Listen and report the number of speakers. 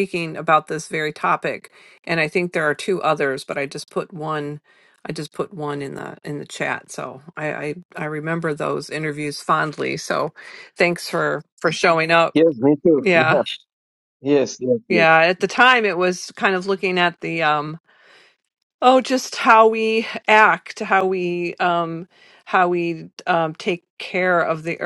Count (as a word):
two